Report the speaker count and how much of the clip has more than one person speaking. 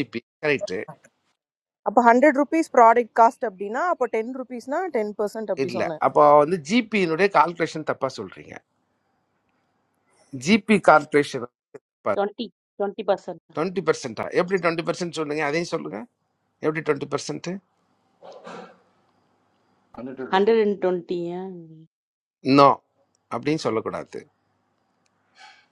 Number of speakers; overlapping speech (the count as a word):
three, about 2%